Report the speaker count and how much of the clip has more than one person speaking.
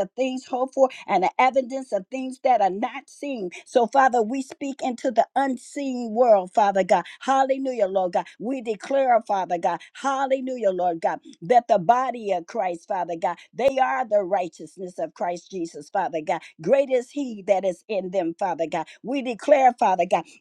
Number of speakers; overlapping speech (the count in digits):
1, no overlap